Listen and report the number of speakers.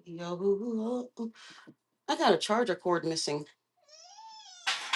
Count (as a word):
one